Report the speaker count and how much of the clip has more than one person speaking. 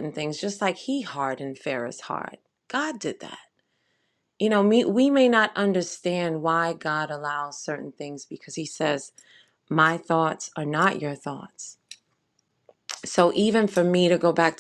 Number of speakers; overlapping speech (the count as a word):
one, no overlap